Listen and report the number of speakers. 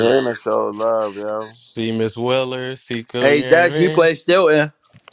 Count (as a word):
three